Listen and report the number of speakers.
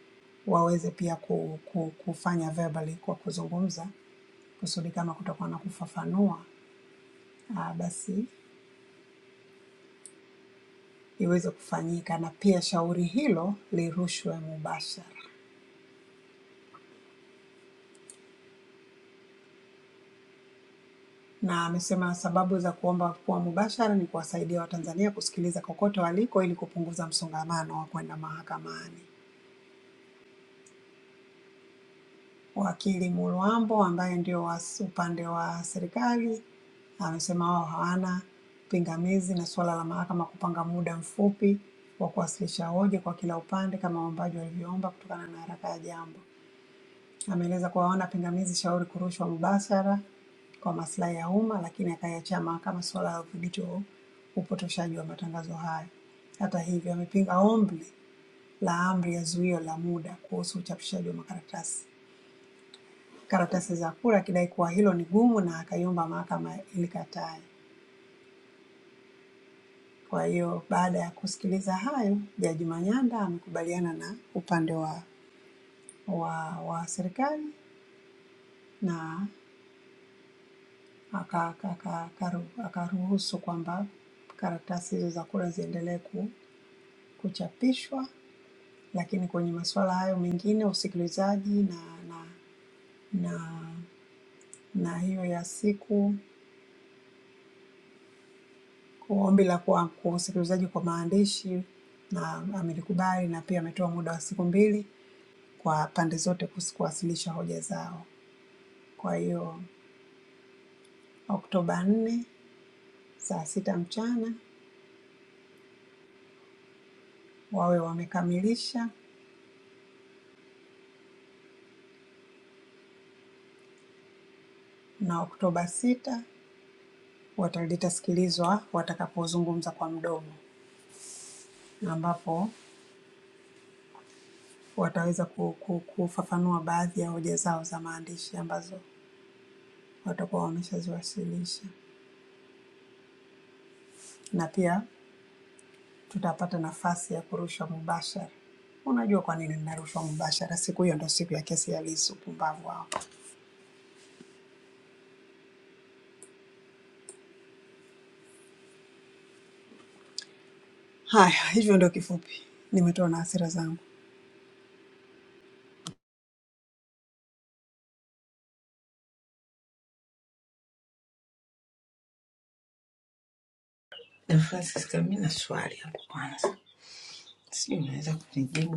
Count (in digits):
2